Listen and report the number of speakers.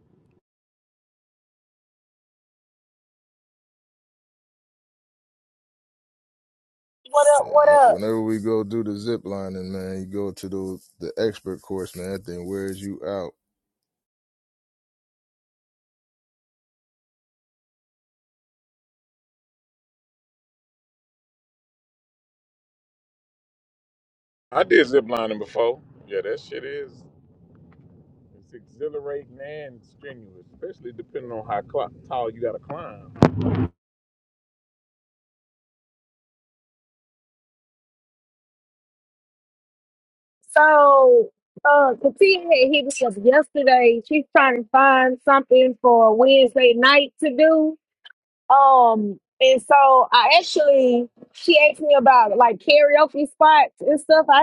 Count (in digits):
3